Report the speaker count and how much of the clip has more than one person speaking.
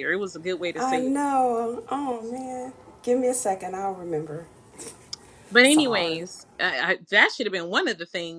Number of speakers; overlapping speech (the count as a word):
two, about 12%